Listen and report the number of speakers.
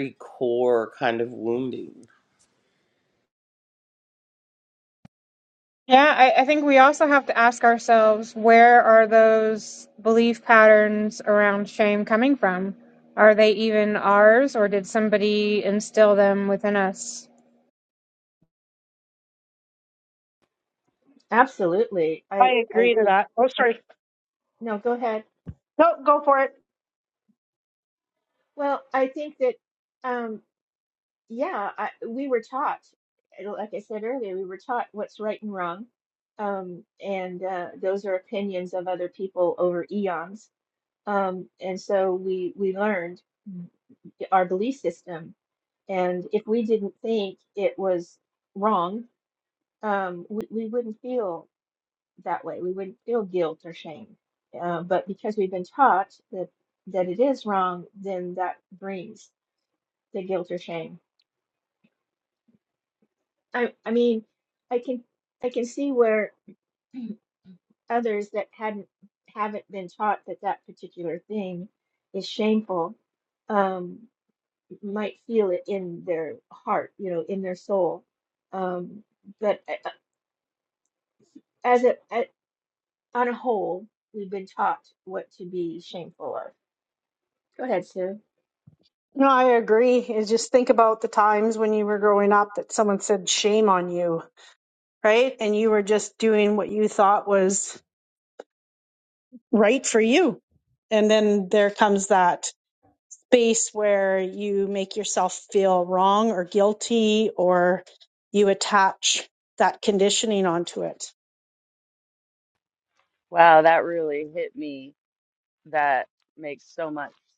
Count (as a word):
five